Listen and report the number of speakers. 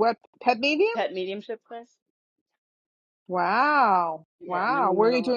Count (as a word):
two